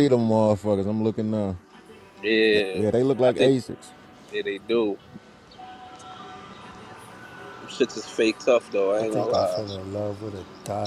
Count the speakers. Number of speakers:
three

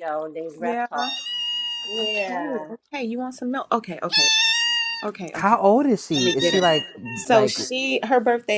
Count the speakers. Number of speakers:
three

